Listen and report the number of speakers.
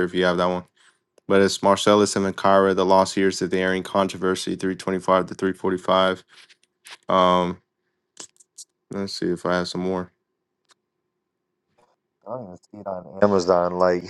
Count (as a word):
two